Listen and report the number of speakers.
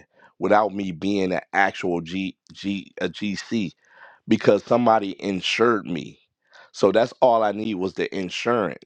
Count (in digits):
1